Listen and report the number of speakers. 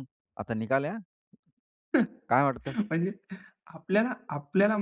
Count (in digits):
2